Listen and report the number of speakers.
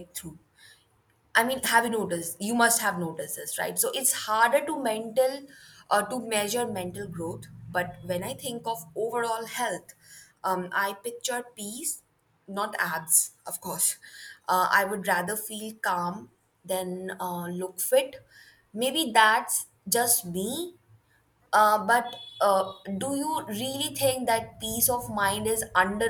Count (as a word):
one